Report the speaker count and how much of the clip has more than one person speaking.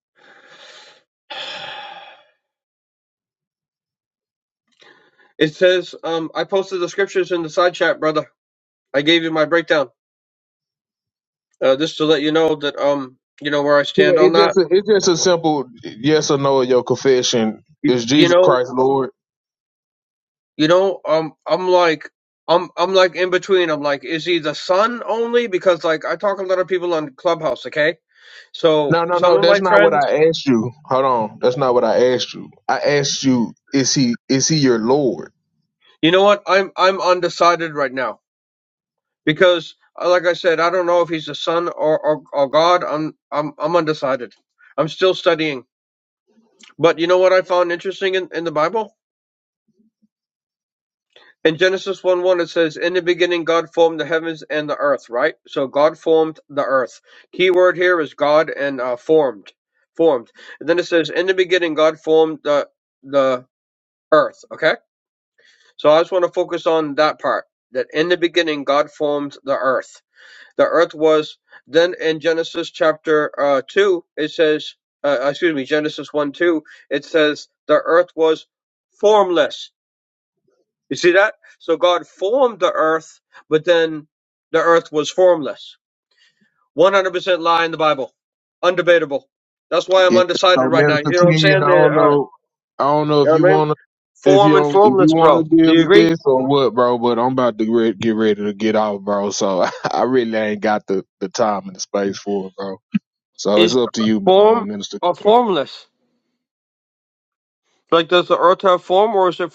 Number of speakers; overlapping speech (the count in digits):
2, about 6%